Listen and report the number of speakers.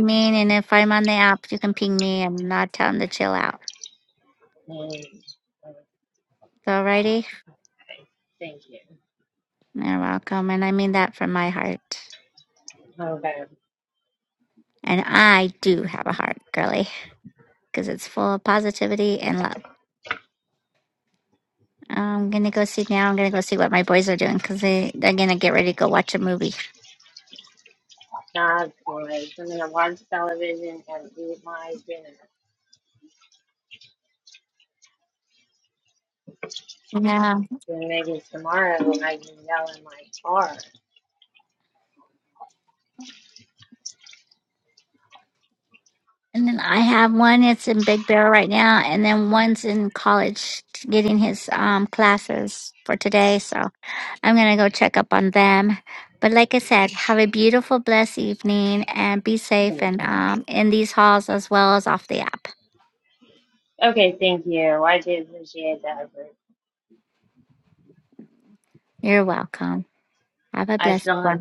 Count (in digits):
2